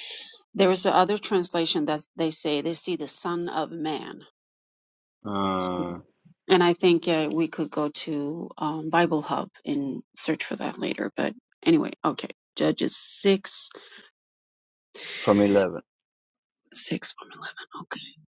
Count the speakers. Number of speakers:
2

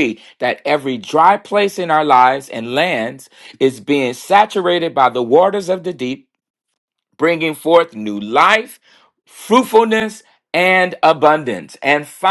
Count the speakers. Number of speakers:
1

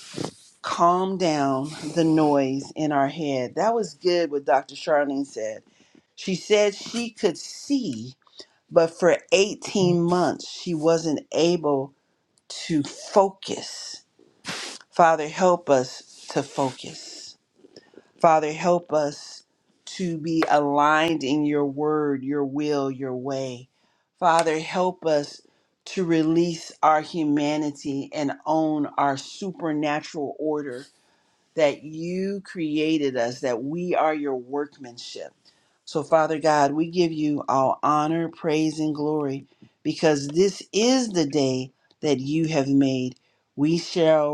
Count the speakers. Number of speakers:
1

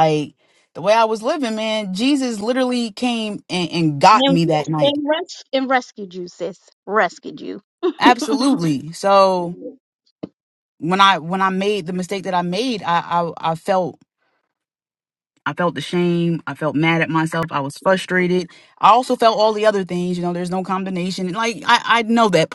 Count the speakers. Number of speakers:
2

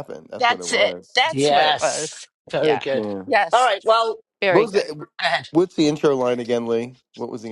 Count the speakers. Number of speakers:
3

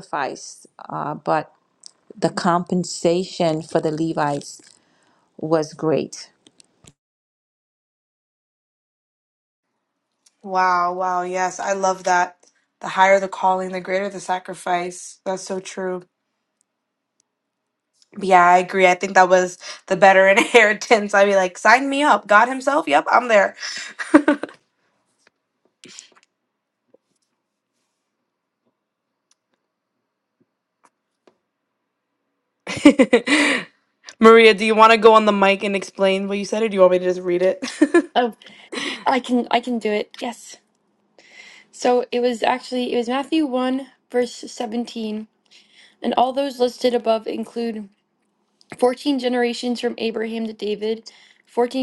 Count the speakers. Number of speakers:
3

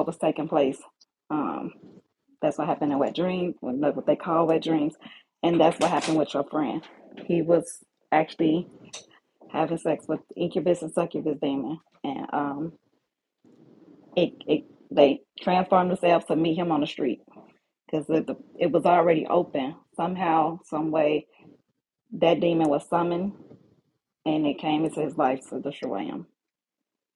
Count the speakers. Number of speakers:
1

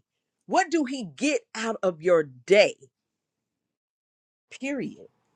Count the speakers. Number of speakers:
1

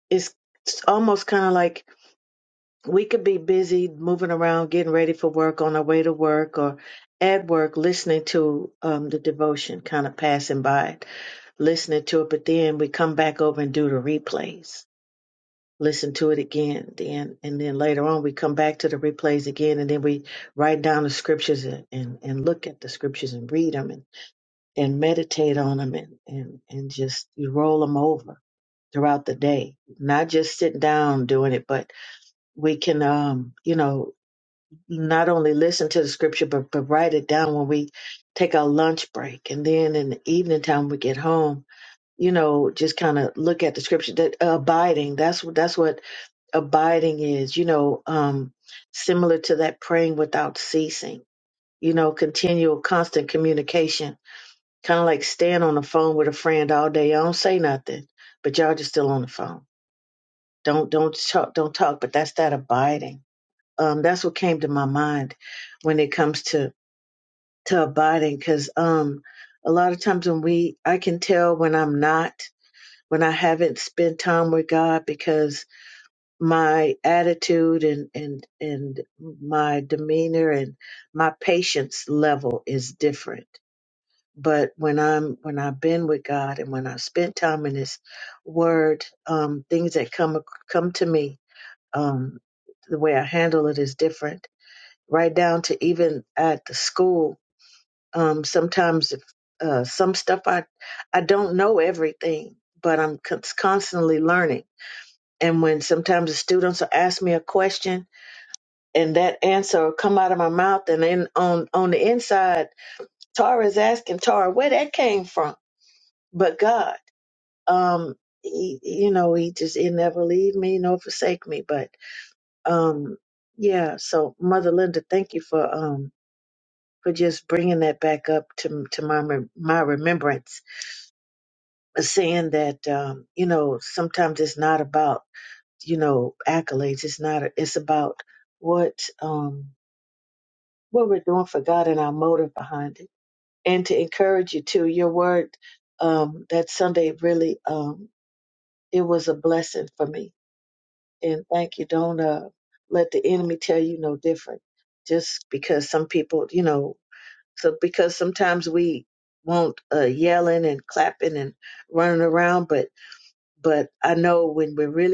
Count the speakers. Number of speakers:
1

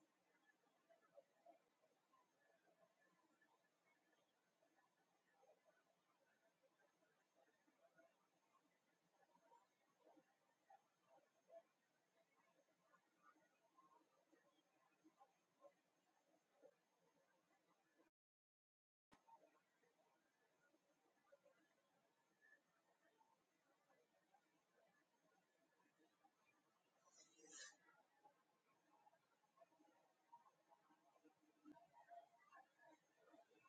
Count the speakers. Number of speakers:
0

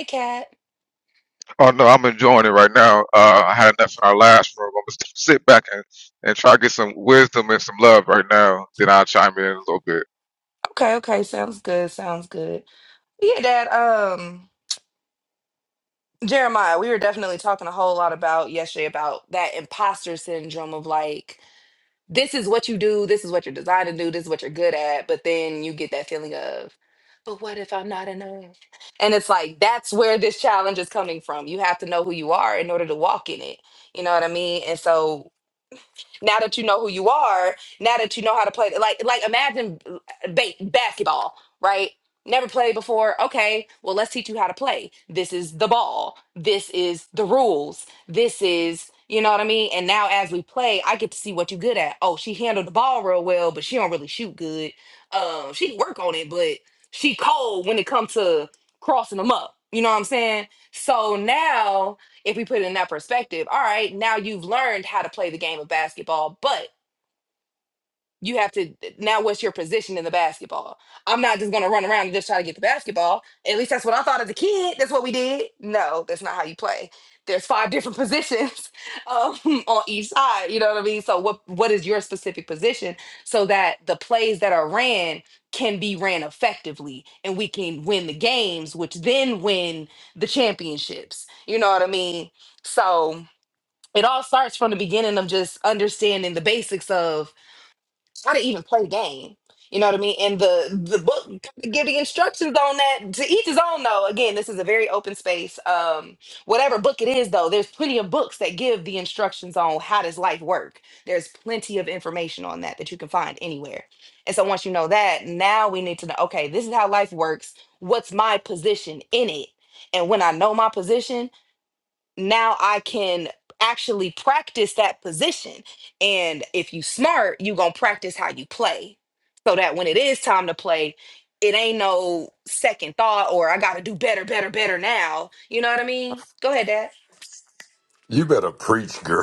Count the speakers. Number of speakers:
3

